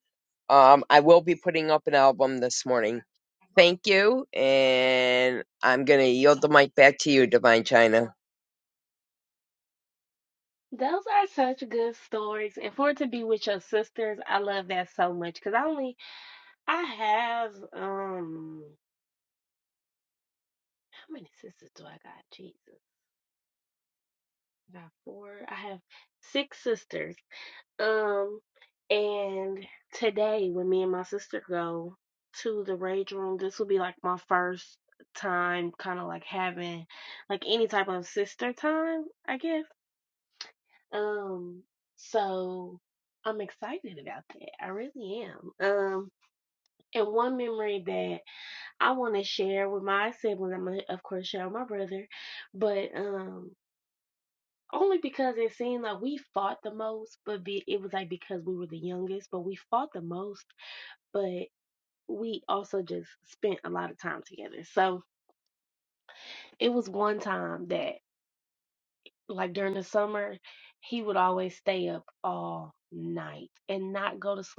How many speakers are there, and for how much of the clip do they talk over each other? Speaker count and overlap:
2, no overlap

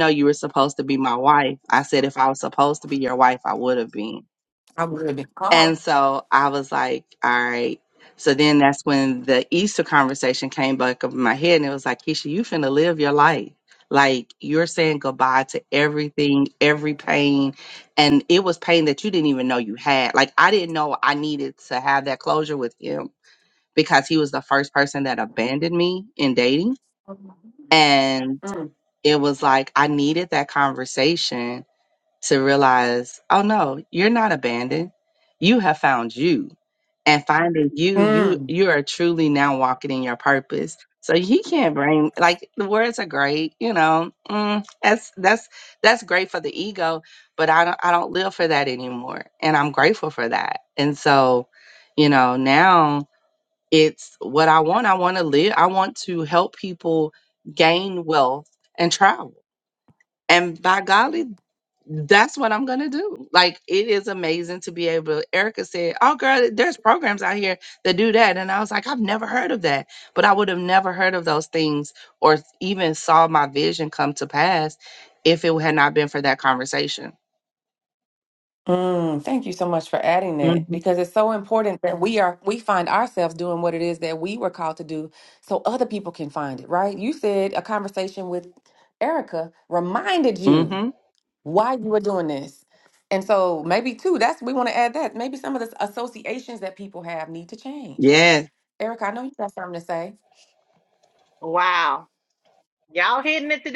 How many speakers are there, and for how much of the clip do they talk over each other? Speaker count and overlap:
3, about 2%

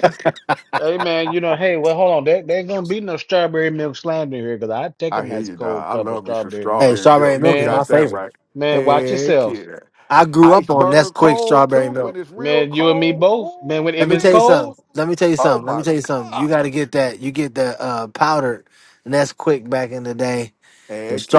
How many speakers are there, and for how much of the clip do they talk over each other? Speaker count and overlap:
3, about 44%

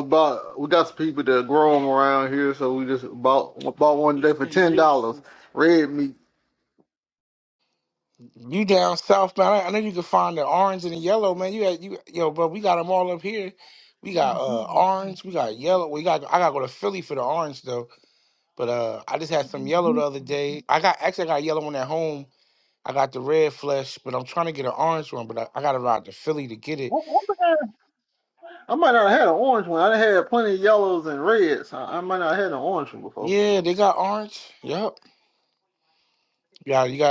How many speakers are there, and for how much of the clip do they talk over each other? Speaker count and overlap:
2, under 1%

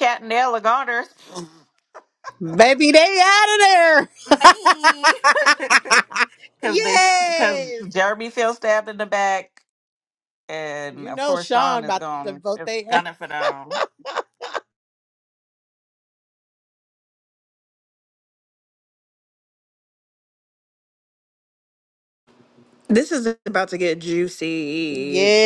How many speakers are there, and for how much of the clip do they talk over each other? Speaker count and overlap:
3, about 13%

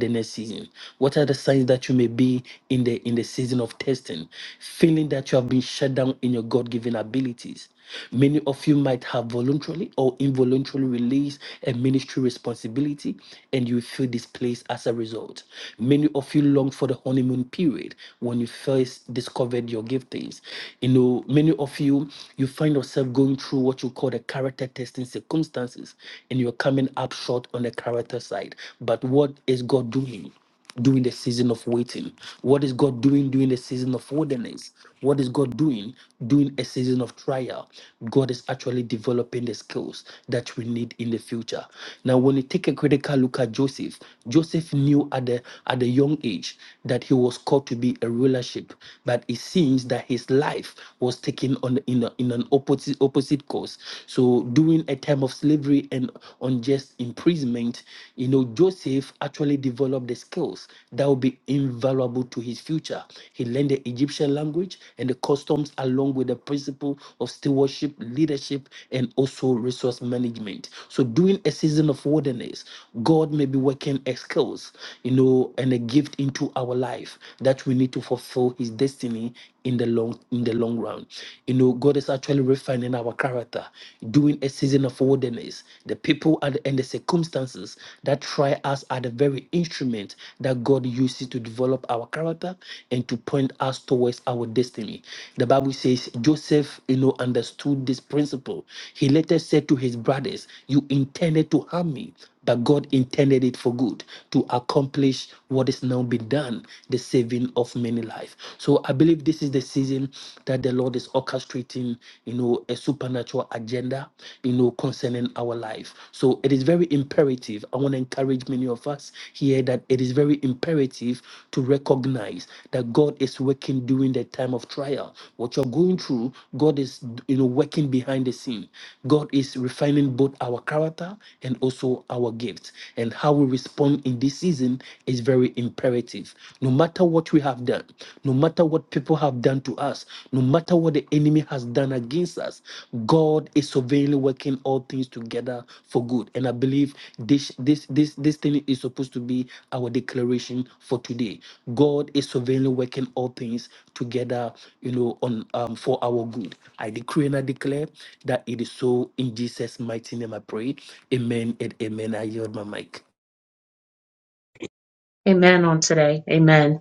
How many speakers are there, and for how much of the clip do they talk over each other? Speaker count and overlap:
2, no overlap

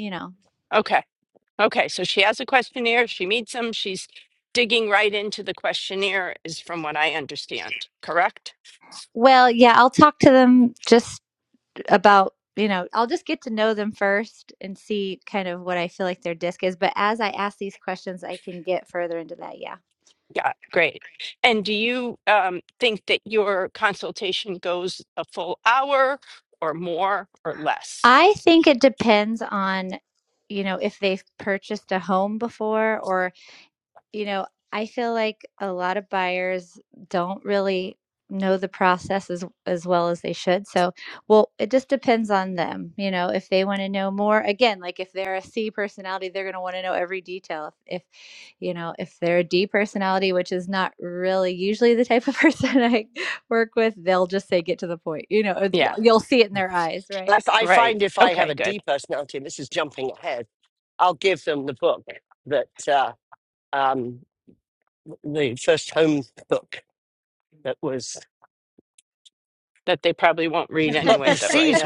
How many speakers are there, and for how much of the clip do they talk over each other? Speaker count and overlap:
3, about 3%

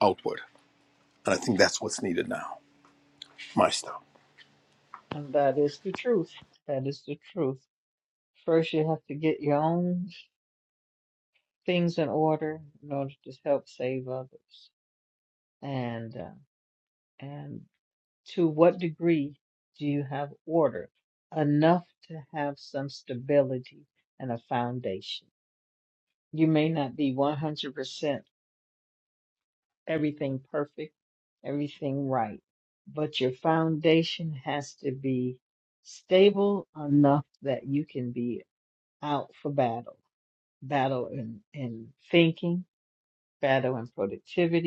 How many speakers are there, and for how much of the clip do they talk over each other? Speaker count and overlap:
2, no overlap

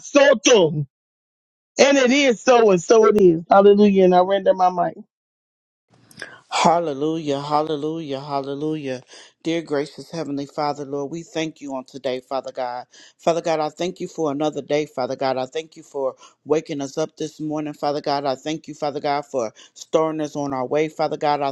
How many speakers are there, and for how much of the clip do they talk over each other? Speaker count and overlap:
2, no overlap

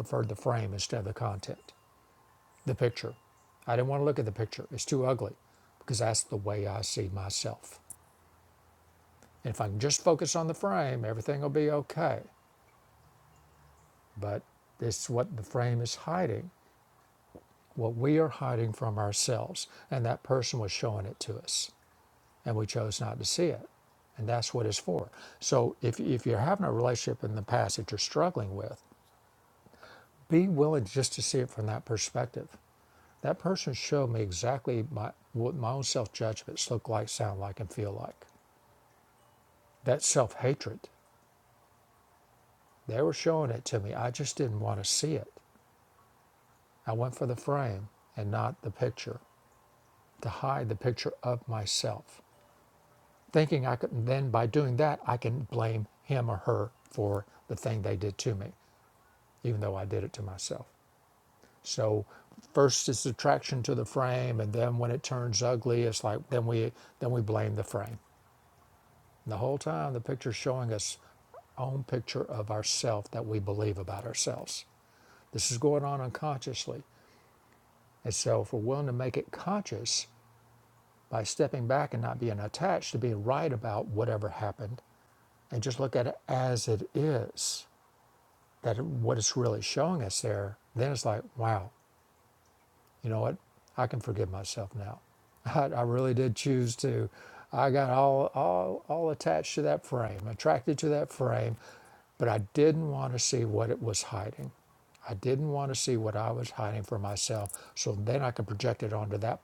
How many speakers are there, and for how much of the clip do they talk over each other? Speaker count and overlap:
1, no overlap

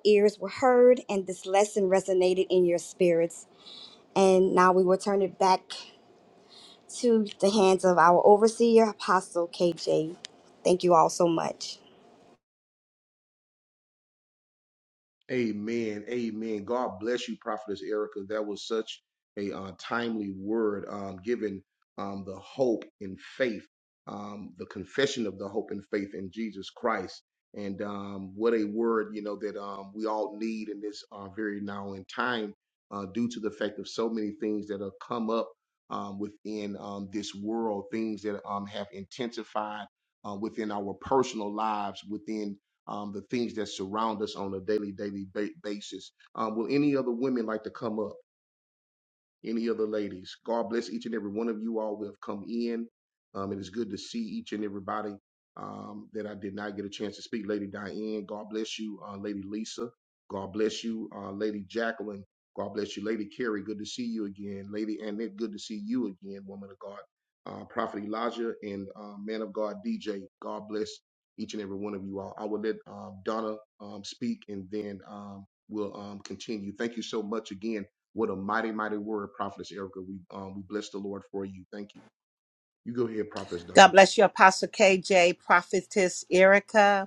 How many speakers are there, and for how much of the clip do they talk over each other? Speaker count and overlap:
3, under 1%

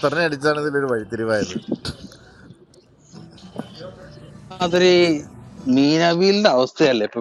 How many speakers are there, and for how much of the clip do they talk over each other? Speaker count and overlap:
2, no overlap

